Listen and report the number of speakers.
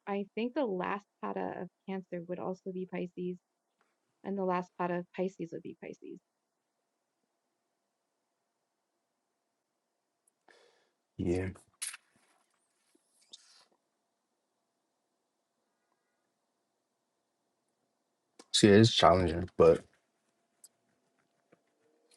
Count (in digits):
2